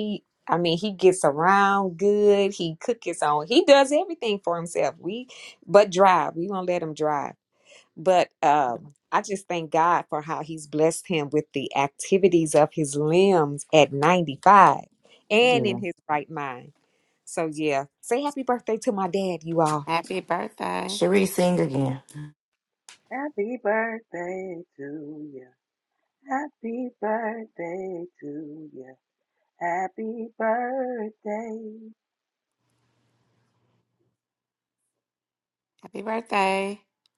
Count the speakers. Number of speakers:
4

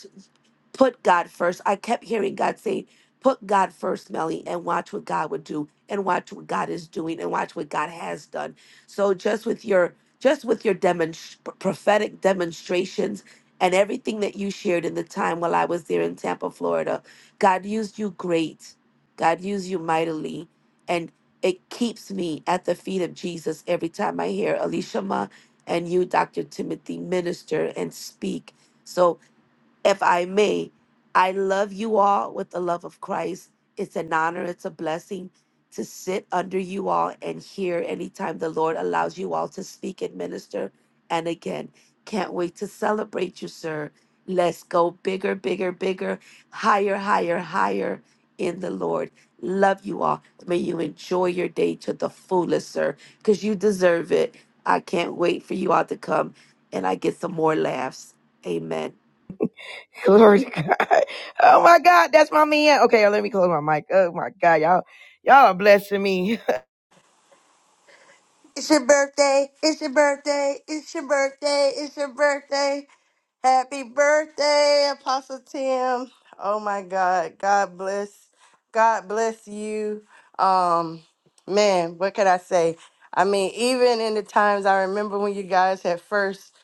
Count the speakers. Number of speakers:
3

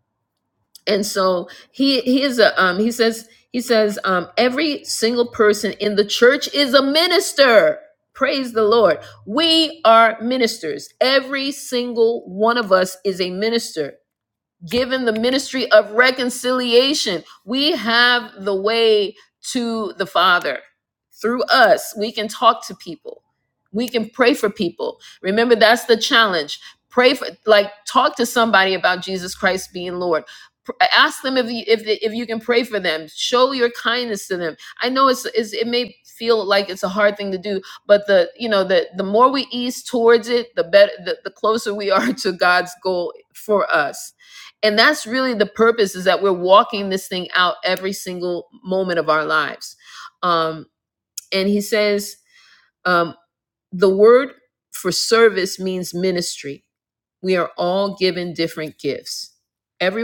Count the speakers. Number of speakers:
1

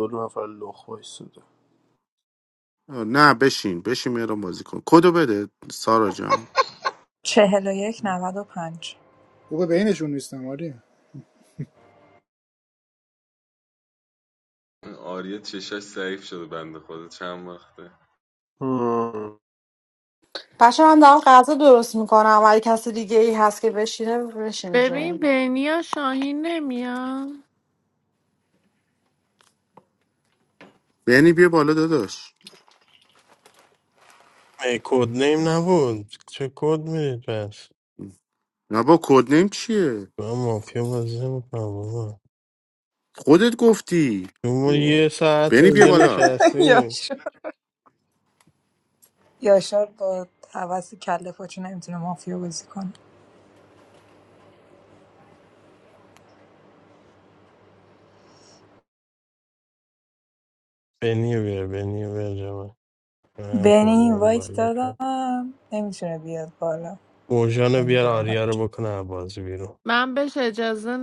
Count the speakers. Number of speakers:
8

